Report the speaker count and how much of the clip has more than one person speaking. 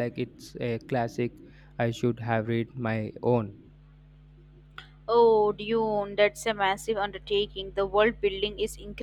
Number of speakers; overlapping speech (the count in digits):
2, no overlap